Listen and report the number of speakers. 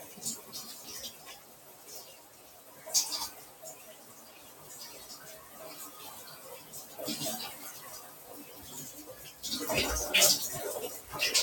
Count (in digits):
0